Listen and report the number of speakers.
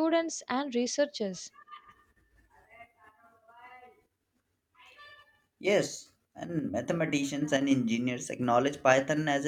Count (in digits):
2